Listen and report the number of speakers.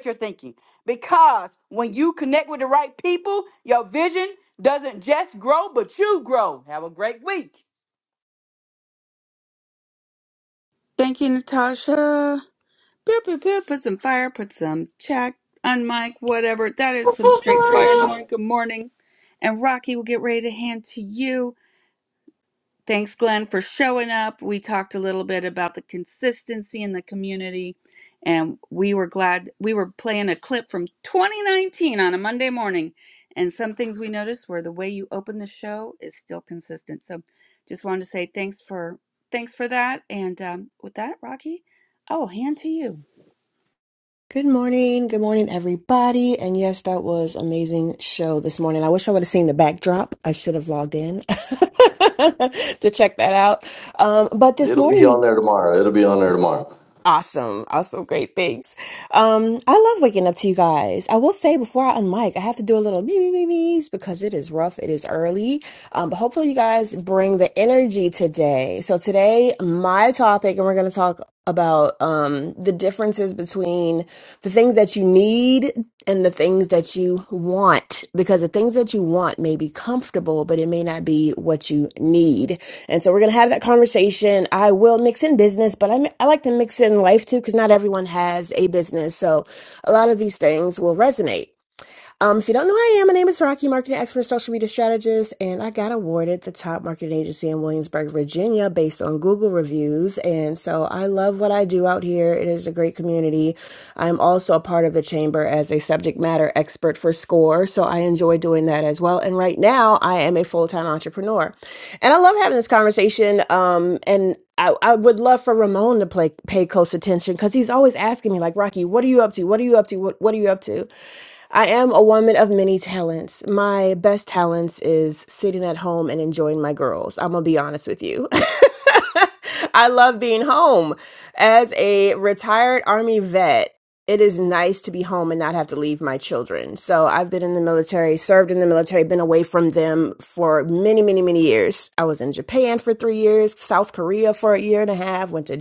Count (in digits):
4